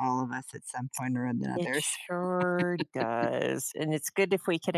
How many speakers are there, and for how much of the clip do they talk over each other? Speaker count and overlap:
2, about 9%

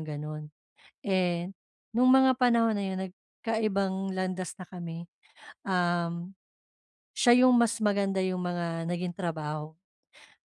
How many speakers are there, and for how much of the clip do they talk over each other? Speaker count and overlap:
1, no overlap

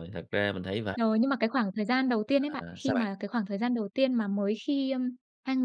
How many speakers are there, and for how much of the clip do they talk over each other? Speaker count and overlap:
2, about 11%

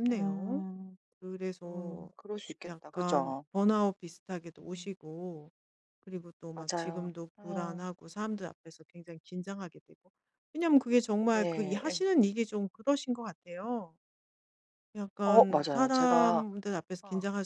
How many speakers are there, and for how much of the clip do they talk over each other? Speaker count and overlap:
2, about 26%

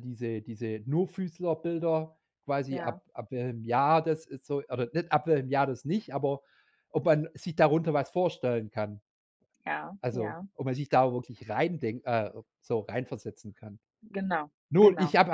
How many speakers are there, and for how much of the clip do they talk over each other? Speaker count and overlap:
2, about 6%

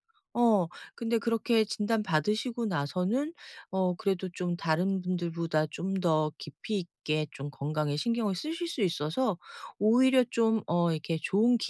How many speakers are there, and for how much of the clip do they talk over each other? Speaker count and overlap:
1, no overlap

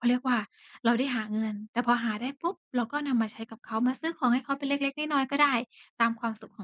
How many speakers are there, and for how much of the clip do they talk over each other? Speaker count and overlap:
1, no overlap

